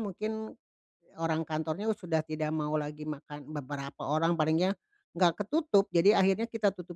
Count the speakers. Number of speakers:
one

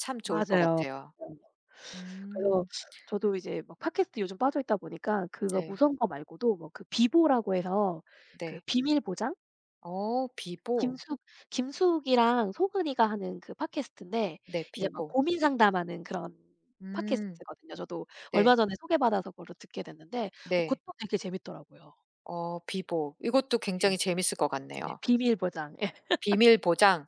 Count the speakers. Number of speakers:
two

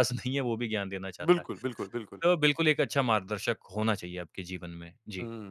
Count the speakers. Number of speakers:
two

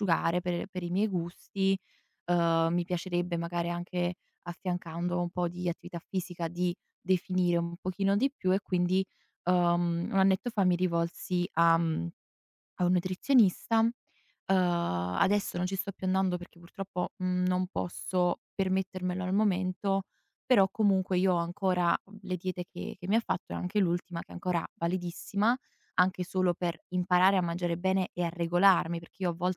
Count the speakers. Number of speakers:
one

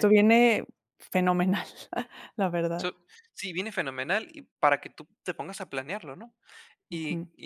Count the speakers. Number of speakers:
two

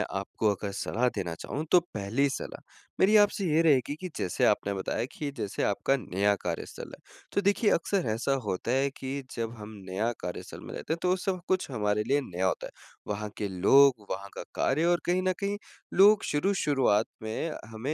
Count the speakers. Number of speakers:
one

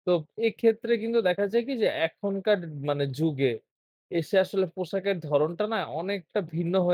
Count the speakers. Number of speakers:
one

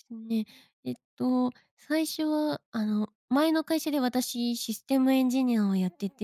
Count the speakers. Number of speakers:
one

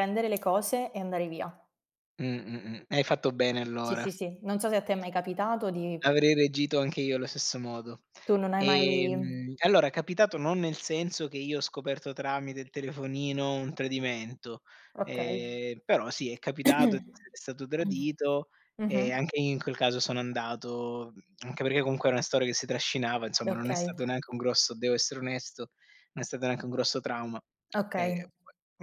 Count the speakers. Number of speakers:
two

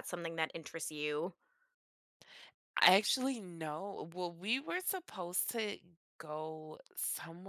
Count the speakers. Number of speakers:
two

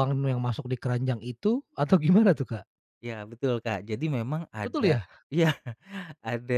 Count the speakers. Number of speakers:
two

